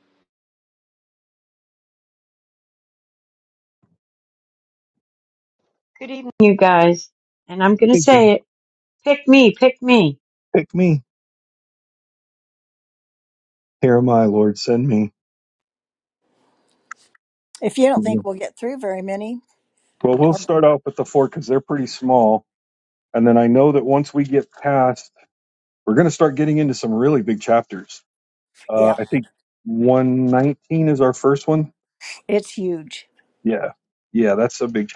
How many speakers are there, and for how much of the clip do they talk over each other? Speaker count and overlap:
3, about 2%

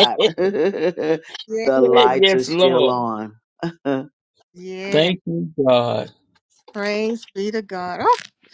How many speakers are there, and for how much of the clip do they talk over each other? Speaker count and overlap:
3, about 12%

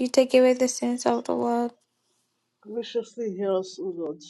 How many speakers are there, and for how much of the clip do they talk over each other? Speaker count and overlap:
2, no overlap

